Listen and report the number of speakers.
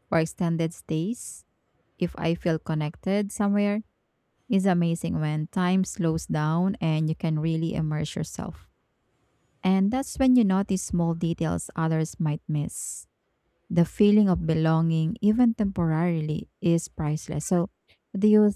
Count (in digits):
1